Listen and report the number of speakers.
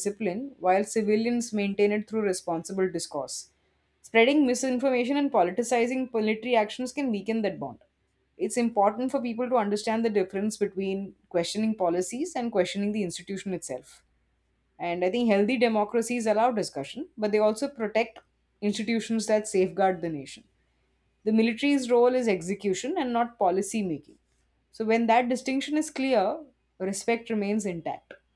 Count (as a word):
one